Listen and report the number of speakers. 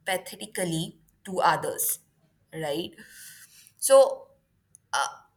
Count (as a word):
one